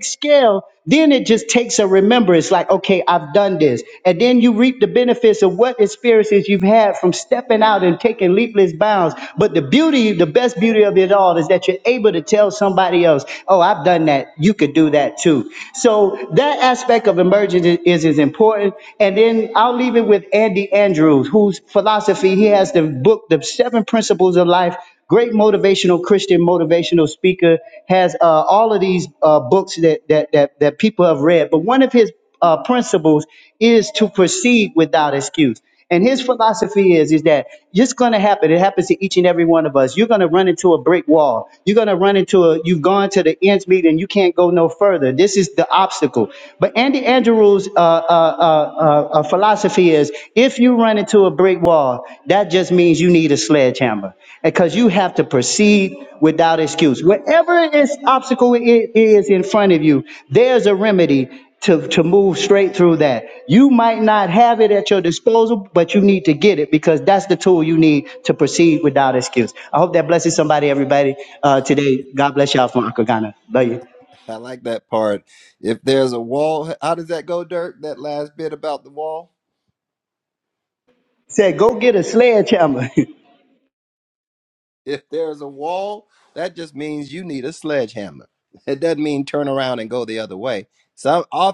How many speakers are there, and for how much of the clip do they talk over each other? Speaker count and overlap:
2, no overlap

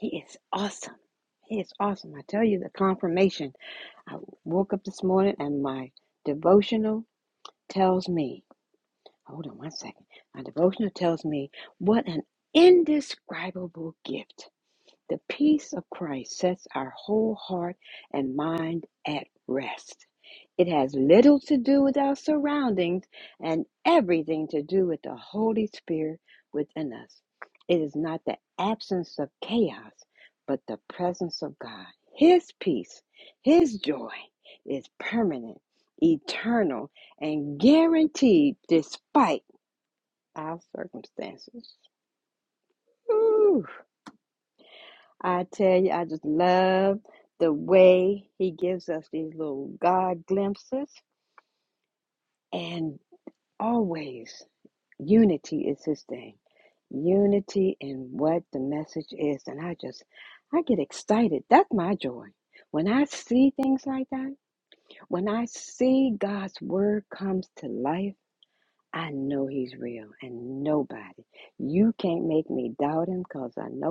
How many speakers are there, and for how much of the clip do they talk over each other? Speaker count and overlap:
1, no overlap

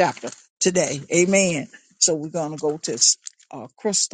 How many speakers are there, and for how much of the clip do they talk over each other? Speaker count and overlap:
1, no overlap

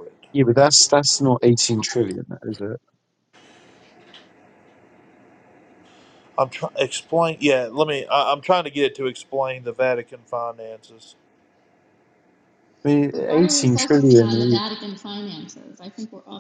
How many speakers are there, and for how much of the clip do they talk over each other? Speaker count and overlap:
3, about 9%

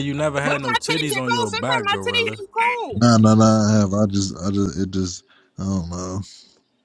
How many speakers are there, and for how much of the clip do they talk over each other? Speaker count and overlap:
3, about 29%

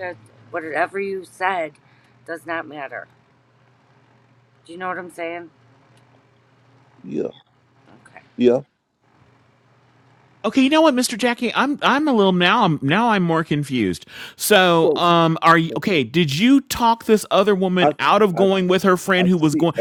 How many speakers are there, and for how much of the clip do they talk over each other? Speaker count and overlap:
3, about 5%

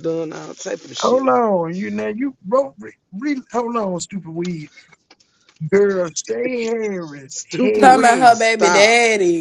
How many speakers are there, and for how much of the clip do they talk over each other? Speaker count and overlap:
3, about 19%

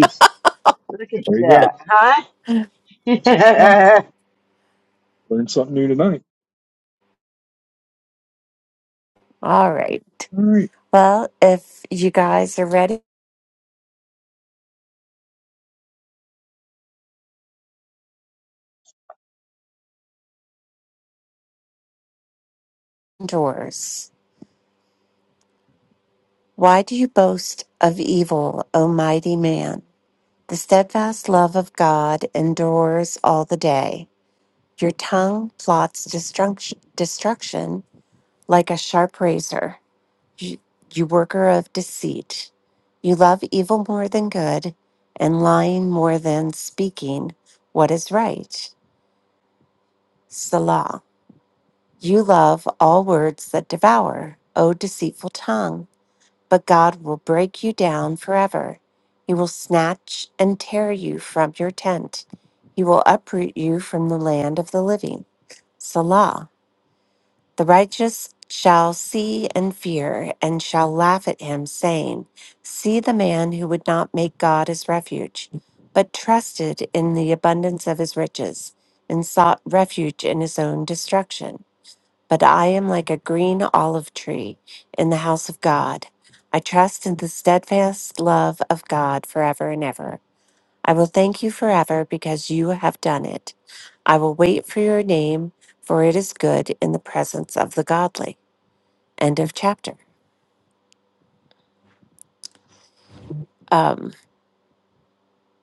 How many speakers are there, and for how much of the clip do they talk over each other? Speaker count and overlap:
3, under 1%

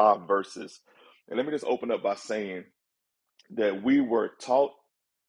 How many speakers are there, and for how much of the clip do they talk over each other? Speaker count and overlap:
1, no overlap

